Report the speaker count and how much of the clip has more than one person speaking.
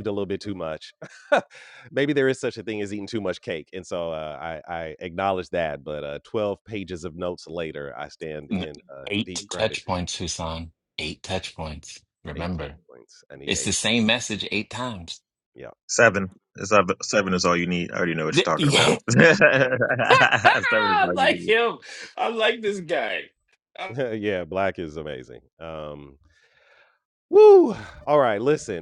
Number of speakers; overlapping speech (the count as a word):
three, about 11%